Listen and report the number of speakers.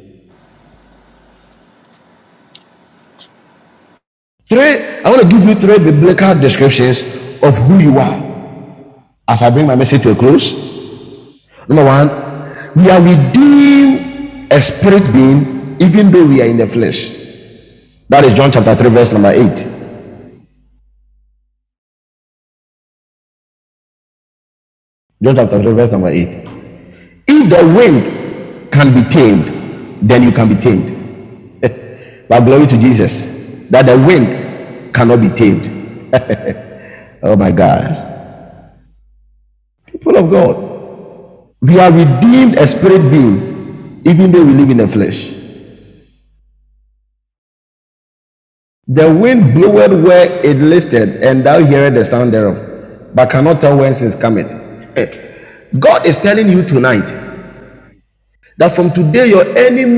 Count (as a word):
one